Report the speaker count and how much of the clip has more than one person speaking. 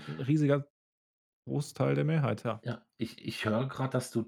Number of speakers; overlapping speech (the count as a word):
two, no overlap